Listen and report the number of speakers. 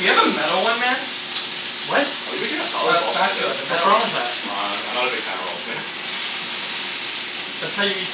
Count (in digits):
3